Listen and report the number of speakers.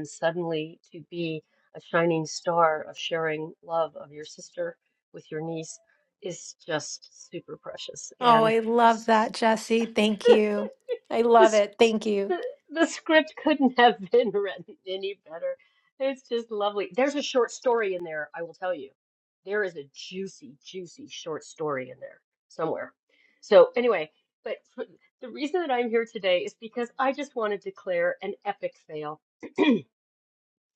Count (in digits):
2